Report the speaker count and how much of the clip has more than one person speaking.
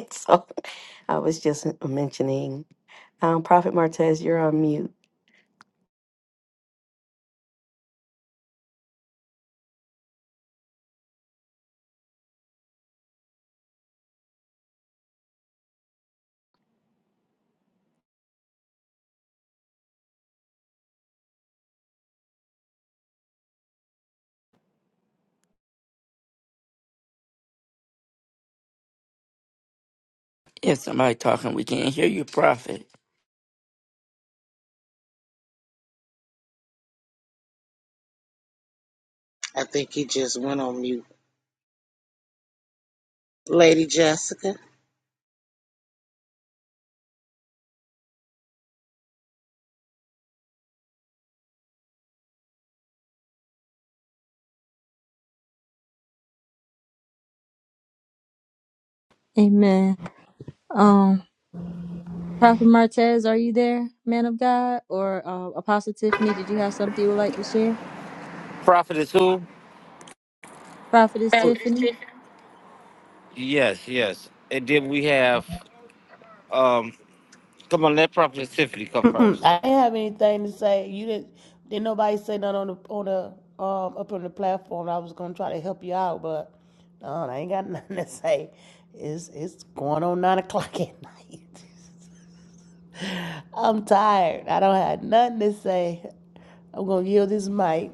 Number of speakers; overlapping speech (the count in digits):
6, under 1%